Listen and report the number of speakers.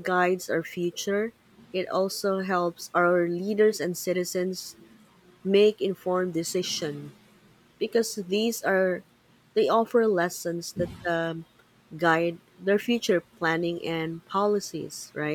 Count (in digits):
1